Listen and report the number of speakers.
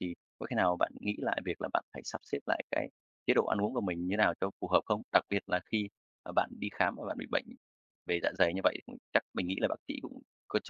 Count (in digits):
1